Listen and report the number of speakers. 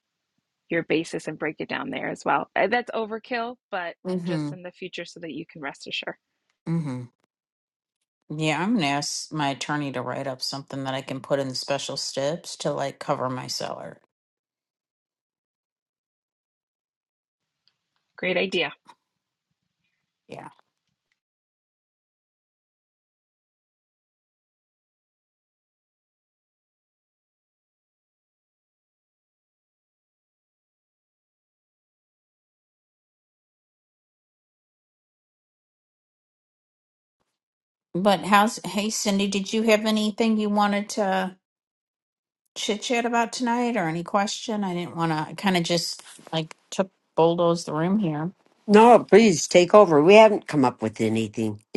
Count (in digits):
3